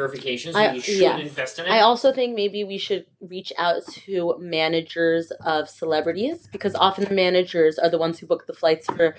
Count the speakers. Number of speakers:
two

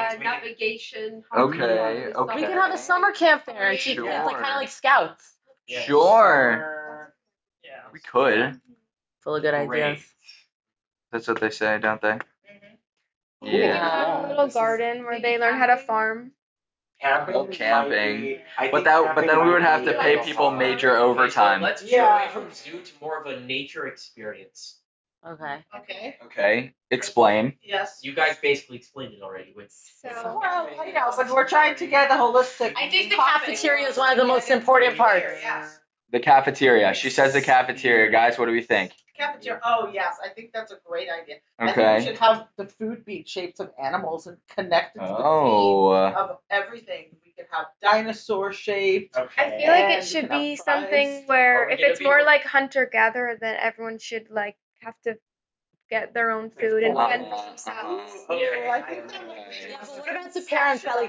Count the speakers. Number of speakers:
seven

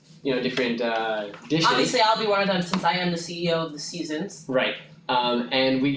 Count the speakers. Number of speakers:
two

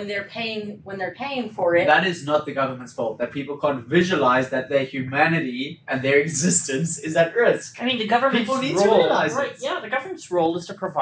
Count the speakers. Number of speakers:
three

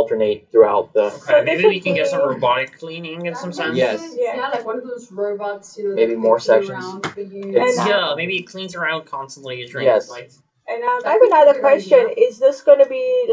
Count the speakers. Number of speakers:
four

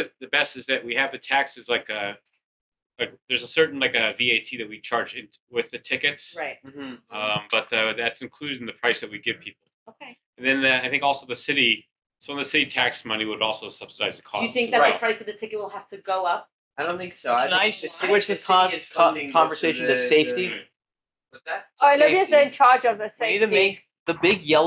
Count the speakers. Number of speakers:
five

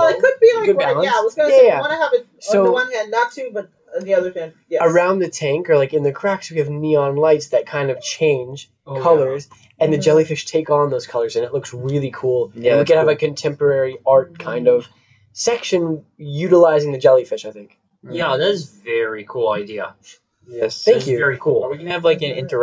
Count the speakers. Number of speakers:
four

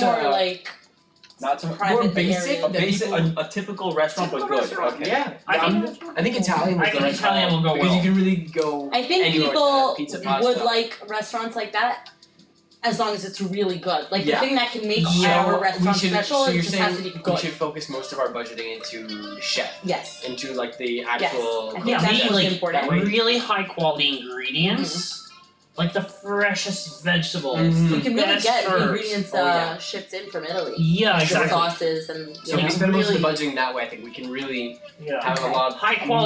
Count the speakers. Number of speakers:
four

